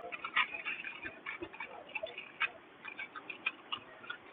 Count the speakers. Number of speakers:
0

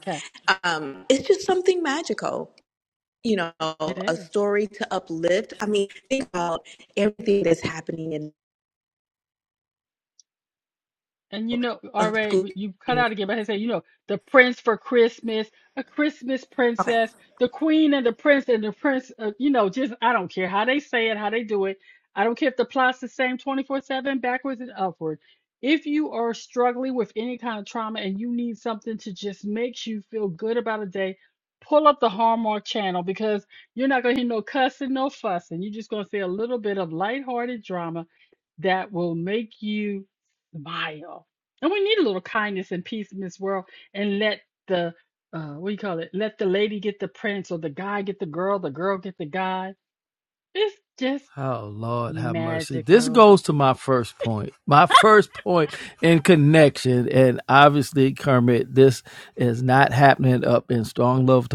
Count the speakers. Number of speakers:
3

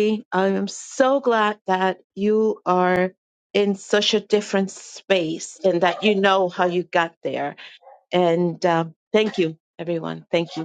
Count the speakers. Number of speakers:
1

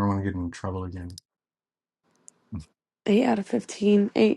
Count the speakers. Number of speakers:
2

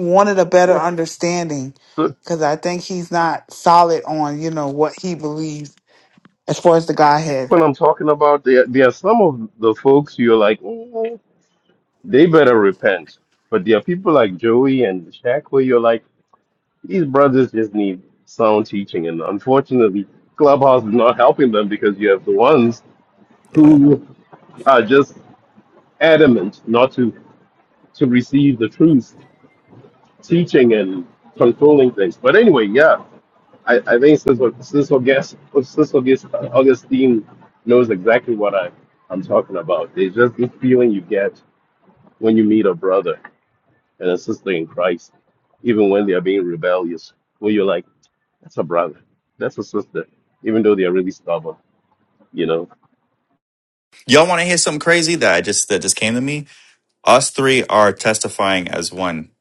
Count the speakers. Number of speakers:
3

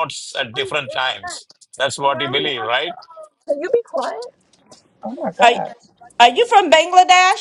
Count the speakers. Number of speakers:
3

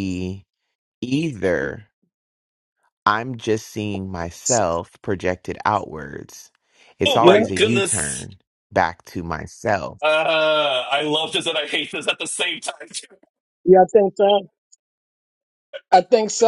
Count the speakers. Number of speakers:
3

